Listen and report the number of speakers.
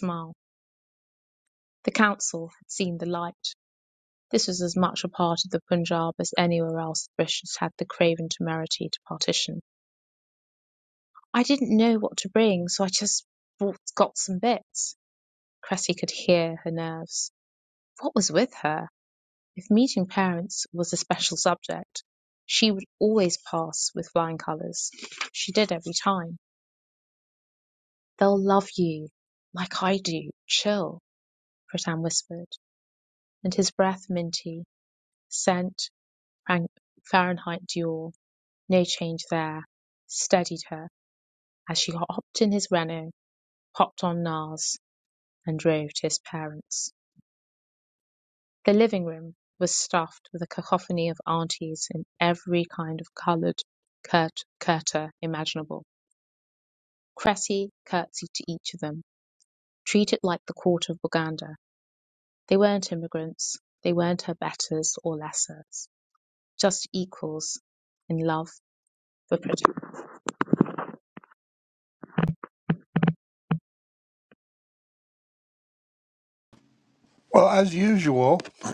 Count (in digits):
2